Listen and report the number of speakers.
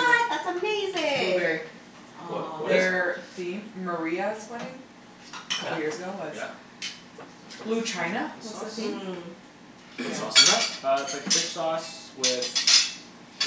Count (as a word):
four